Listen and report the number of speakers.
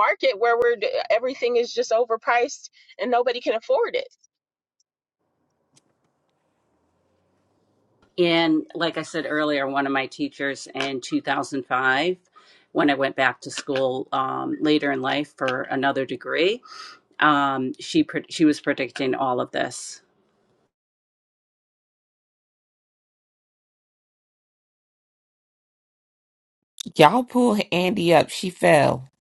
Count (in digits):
3